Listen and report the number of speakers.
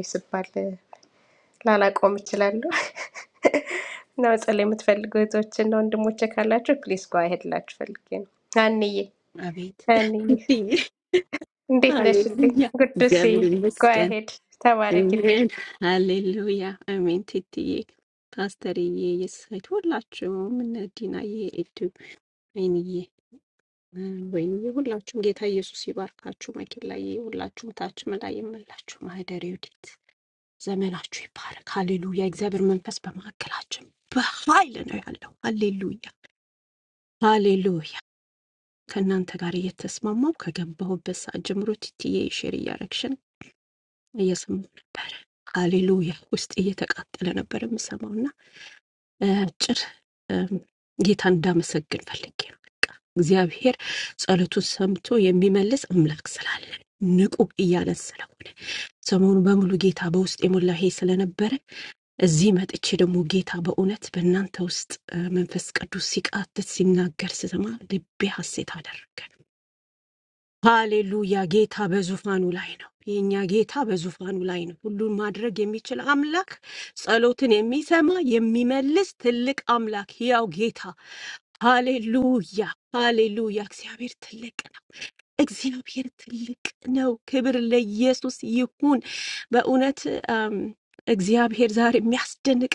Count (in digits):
2